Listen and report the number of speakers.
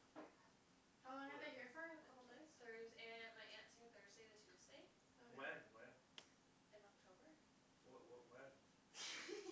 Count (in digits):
3